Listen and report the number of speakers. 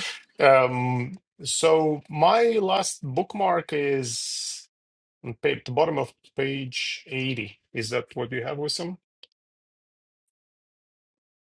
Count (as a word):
one